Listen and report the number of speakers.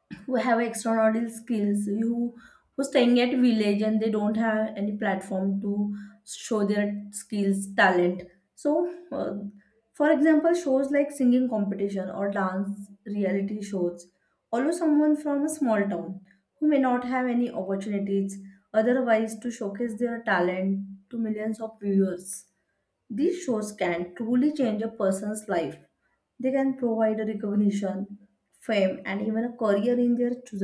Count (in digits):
1